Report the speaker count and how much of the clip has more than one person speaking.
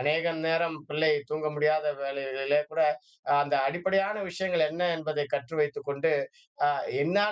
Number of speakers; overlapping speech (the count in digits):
1, no overlap